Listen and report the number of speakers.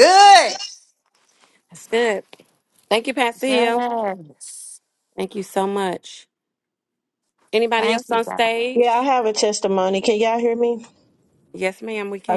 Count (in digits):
3